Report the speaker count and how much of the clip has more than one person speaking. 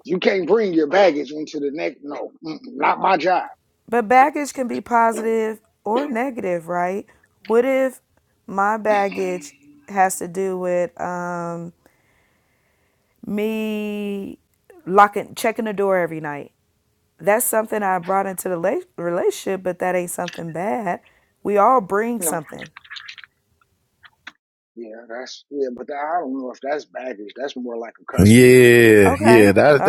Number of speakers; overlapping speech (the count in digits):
3, about 6%